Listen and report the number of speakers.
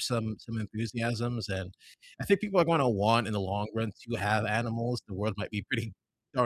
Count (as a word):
one